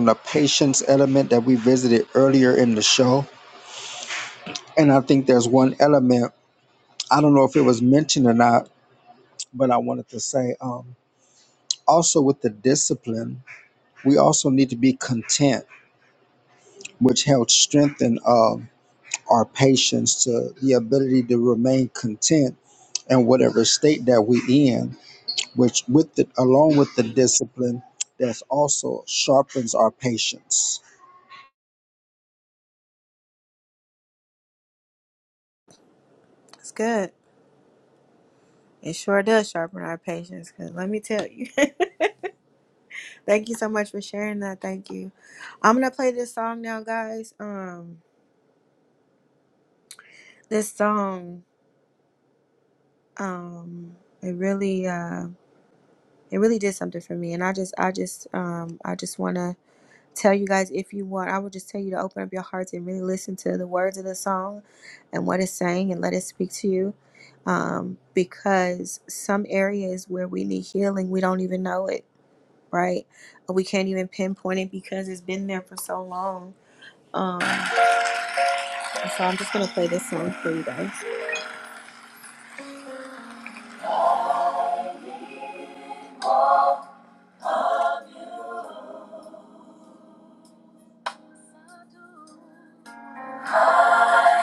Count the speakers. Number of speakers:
2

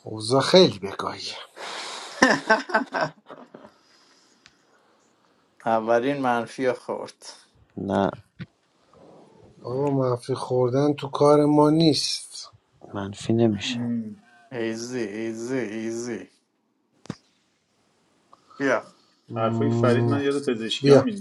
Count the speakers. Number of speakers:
4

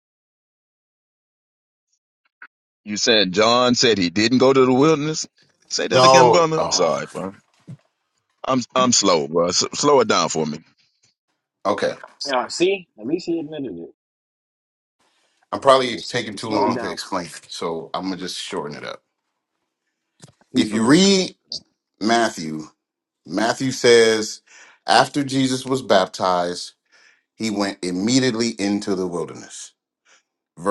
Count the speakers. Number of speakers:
3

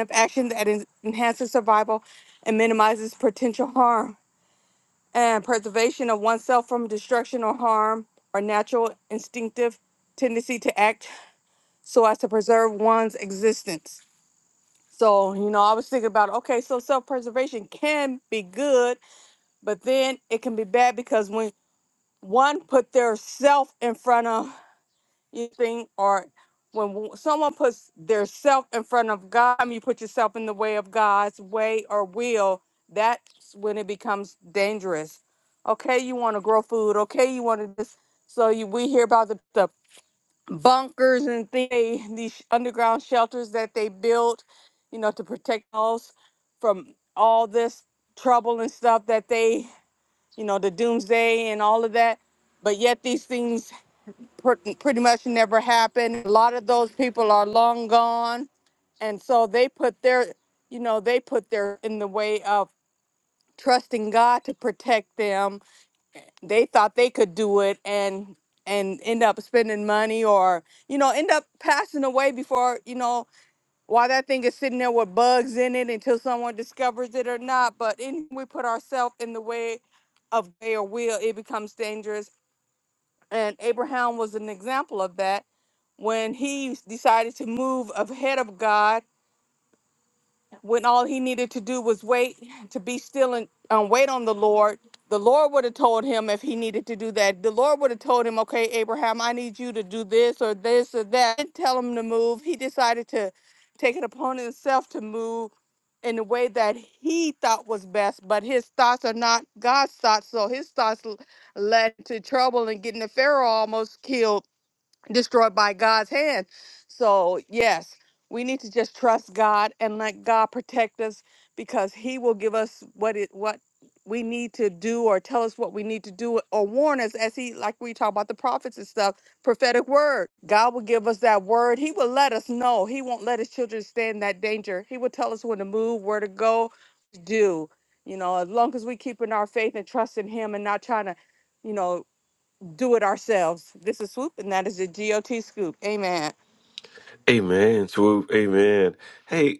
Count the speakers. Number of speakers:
2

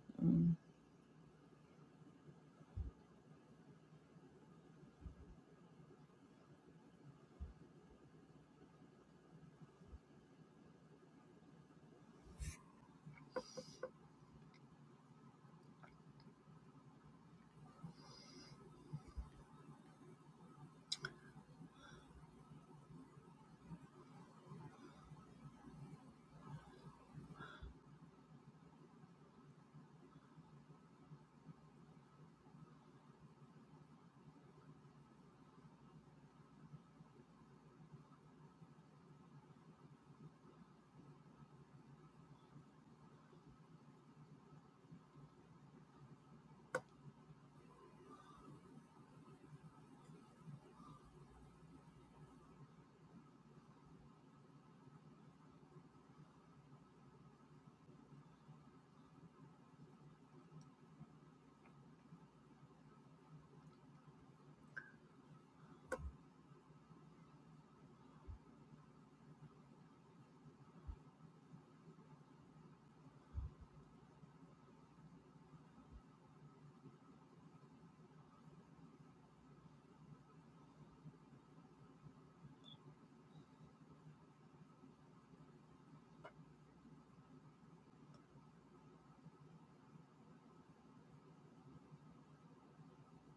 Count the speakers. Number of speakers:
0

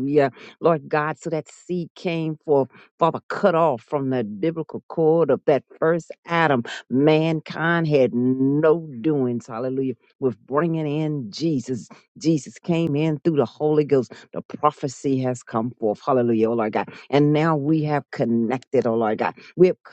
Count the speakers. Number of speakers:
1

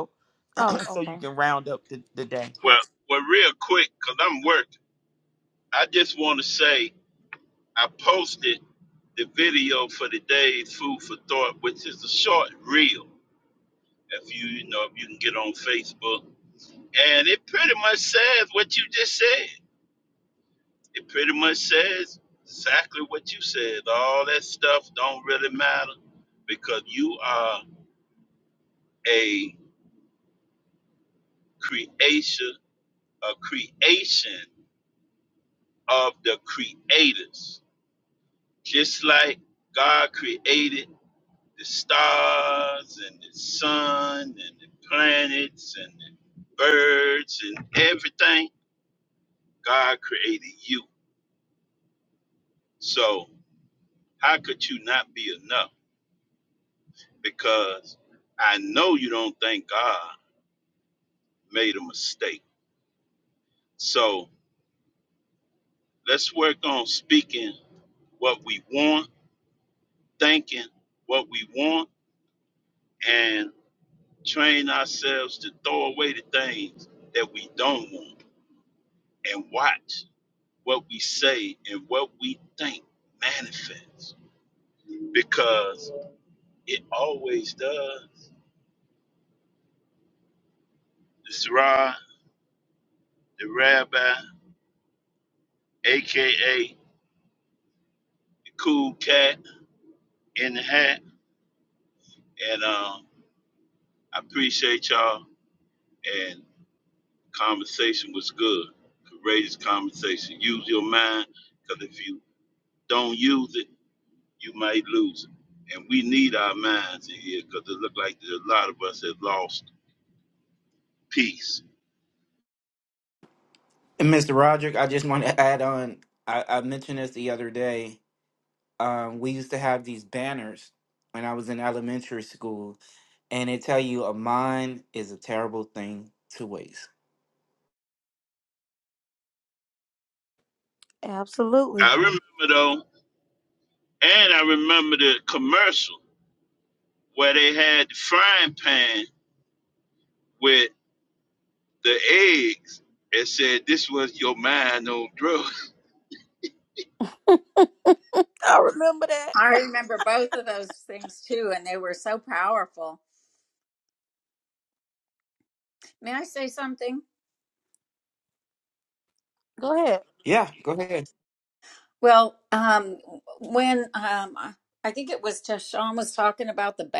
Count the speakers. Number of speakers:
5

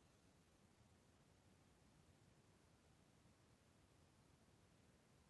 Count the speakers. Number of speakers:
0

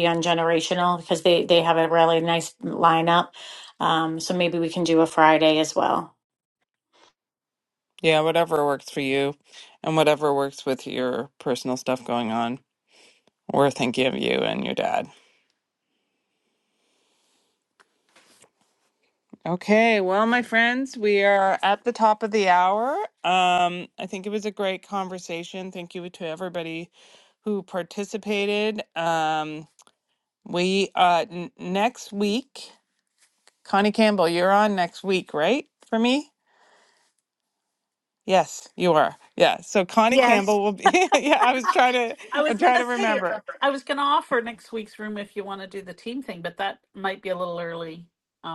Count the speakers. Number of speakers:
3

